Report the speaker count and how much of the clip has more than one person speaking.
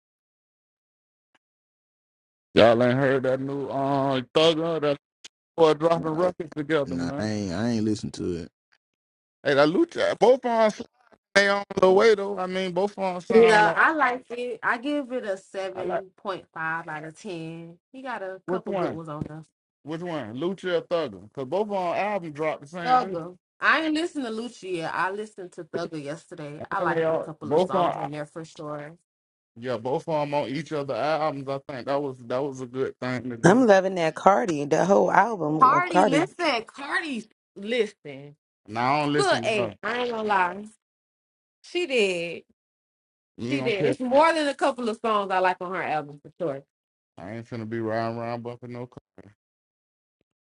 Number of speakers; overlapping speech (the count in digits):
4, about 10%